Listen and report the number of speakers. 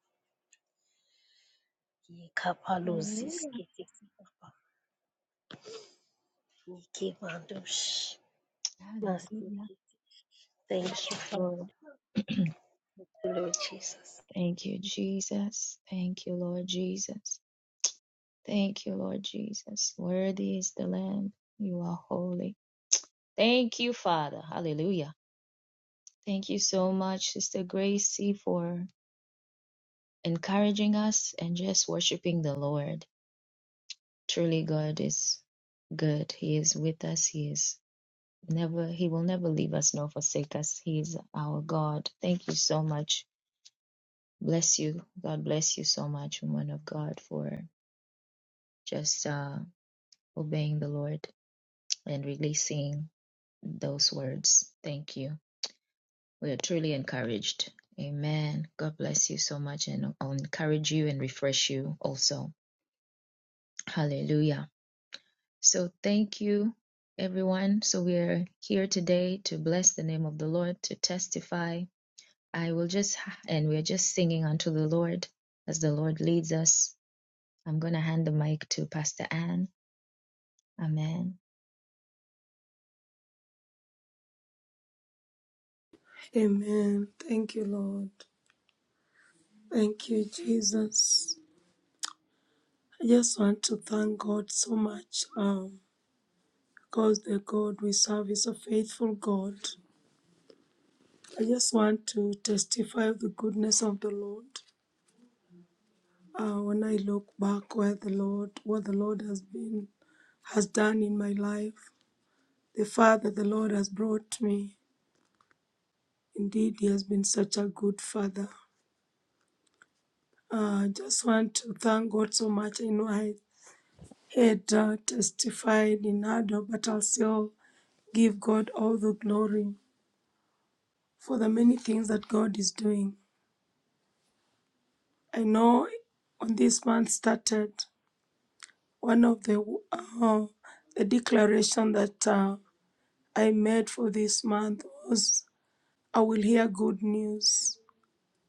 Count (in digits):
3